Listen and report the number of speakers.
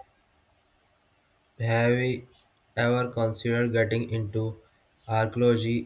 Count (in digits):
1